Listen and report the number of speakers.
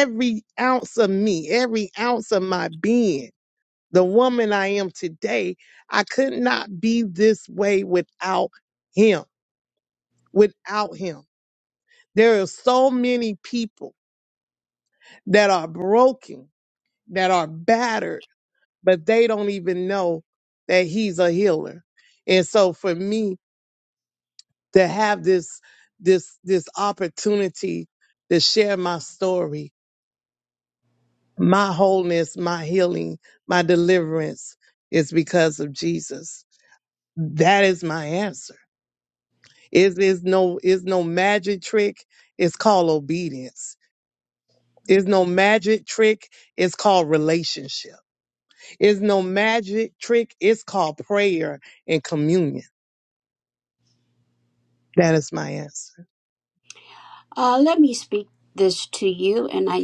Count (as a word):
two